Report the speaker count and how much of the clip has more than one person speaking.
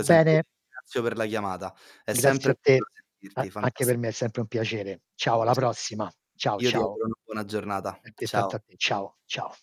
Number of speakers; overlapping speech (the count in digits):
2, about 23%